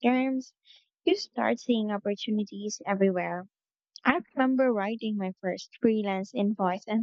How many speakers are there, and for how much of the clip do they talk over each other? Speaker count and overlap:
1, no overlap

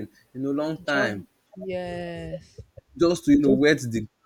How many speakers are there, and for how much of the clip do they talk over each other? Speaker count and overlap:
2, about 11%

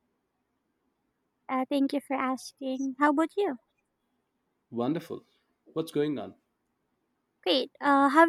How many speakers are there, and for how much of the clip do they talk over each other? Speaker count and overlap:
2, no overlap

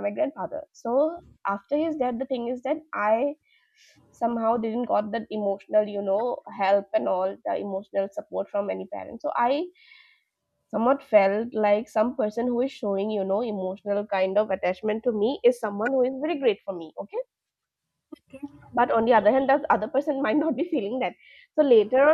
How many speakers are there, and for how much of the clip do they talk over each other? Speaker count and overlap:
1, no overlap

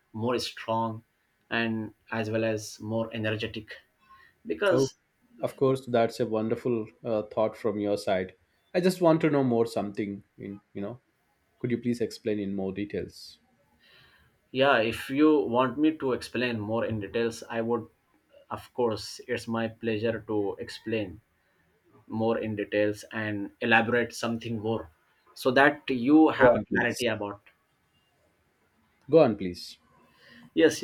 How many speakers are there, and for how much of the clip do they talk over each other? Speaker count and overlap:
2, about 2%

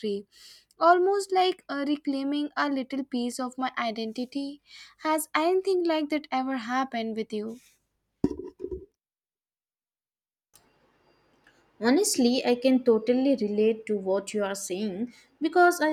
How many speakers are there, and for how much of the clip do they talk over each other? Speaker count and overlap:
2, no overlap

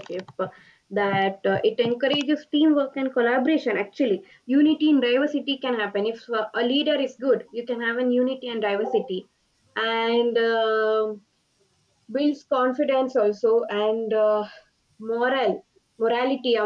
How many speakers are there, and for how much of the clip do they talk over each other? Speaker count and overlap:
1, no overlap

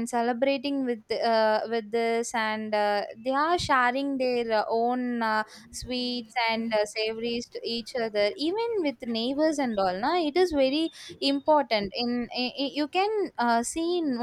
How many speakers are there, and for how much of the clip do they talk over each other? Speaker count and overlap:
1, no overlap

